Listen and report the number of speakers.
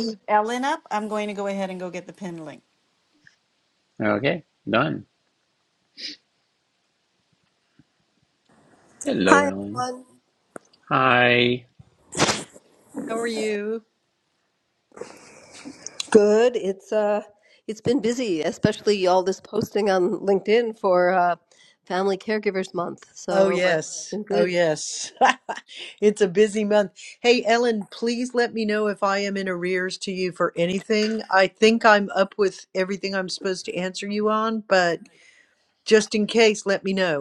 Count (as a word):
four